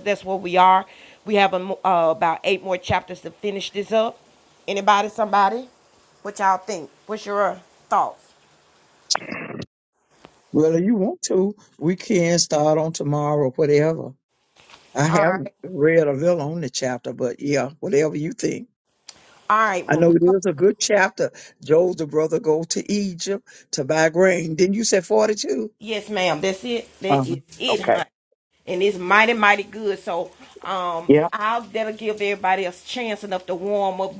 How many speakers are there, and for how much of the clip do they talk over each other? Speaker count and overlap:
2, about 6%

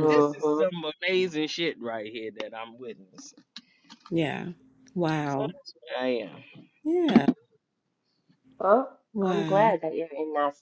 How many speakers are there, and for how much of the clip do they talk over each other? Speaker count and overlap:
3, about 13%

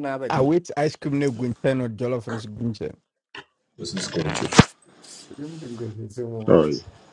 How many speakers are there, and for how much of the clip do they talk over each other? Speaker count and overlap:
3, about 3%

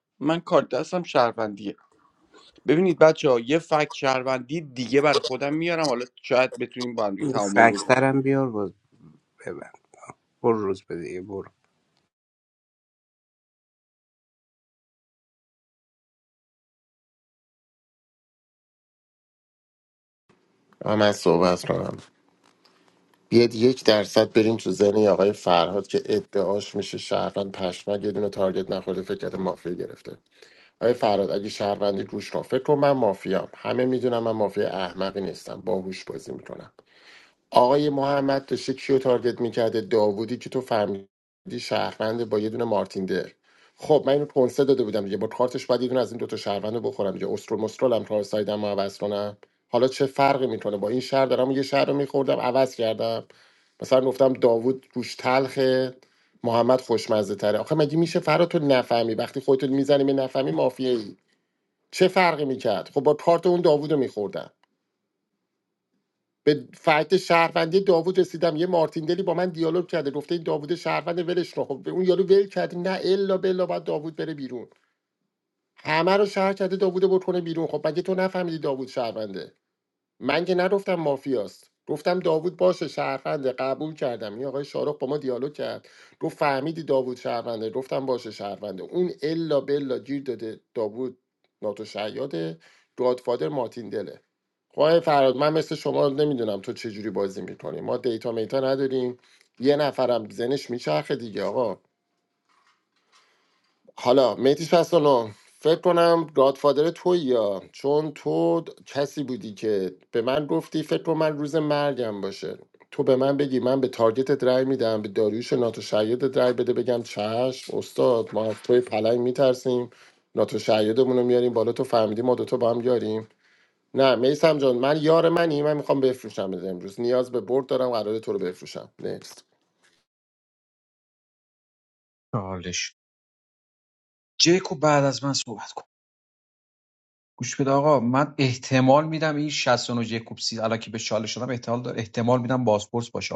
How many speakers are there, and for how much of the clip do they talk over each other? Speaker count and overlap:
4, under 1%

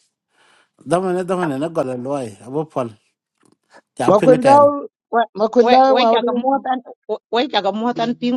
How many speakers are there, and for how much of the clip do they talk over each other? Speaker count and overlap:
3, about 15%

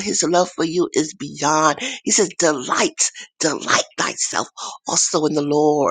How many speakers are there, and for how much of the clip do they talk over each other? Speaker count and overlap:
1, no overlap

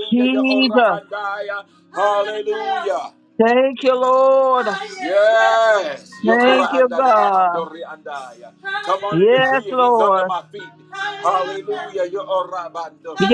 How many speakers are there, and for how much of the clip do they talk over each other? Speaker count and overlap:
3, about 49%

